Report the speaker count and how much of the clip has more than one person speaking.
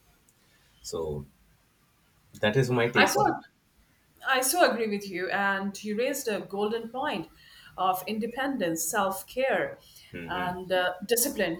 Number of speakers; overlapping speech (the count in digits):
2, about 6%